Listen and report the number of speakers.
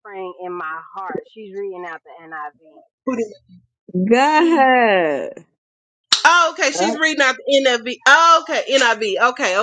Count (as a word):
three